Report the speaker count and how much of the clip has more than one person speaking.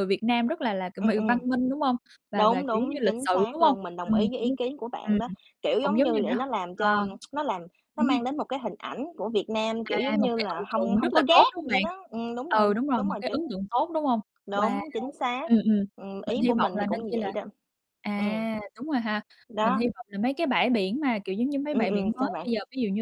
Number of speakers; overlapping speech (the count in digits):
2, about 41%